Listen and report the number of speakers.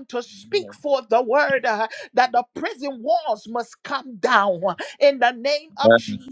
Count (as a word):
one